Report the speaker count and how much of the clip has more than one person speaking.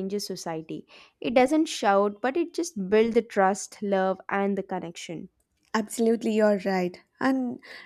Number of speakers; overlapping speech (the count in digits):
2, no overlap